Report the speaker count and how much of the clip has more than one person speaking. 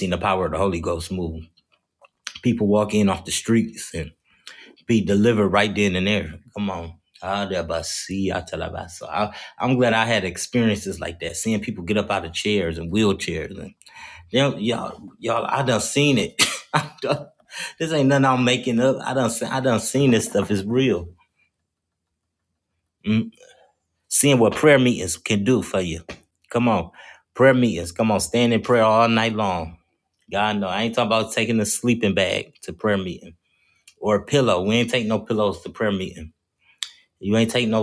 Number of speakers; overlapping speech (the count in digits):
1, no overlap